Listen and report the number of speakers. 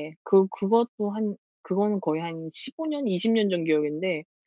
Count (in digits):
1